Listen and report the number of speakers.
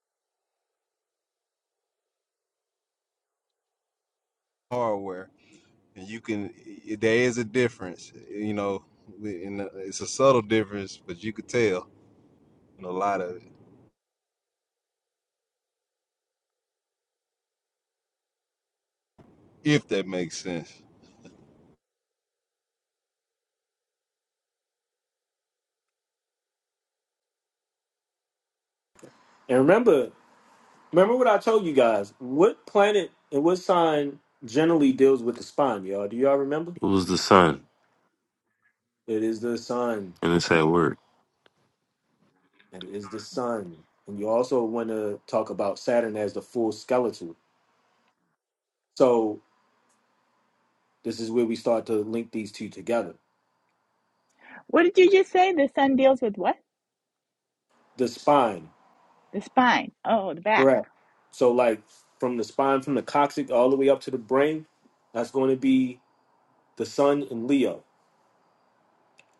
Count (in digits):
4